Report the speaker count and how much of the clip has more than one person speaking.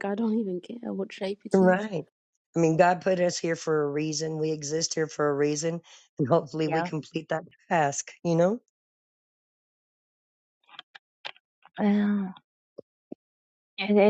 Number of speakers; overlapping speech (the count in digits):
3, about 3%